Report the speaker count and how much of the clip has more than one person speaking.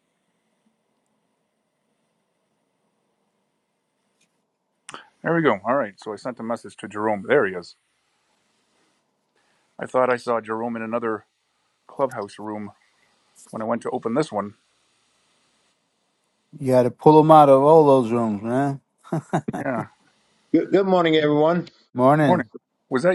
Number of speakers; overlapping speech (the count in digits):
3, about 1%